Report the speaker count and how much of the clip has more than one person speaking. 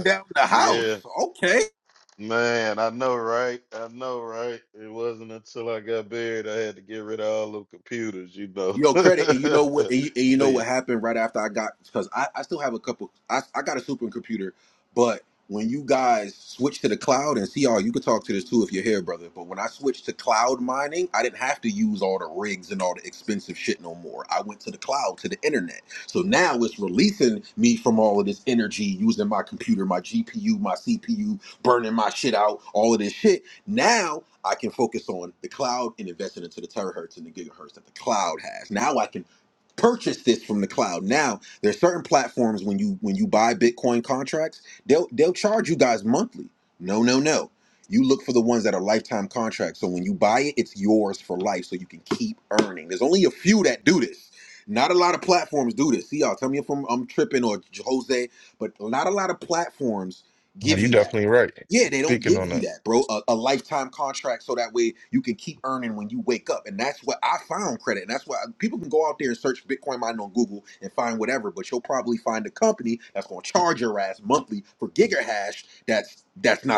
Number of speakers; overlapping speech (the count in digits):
3, about 4%